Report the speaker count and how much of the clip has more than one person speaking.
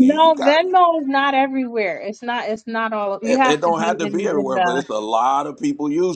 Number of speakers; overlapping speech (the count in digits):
2, about 36%